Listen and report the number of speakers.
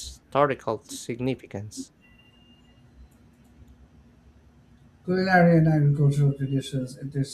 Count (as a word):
two